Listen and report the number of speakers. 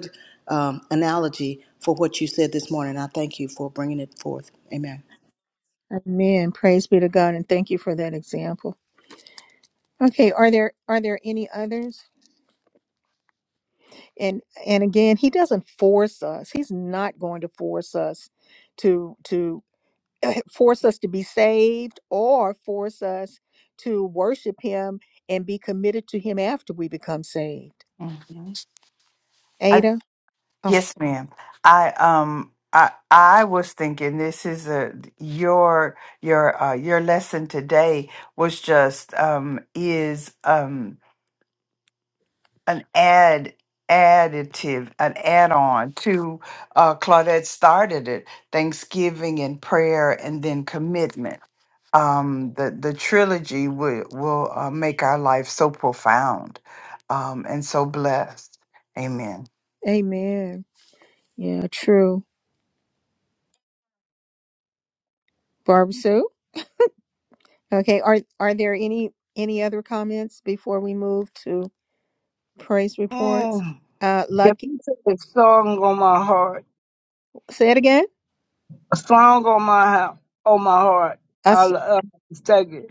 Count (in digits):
4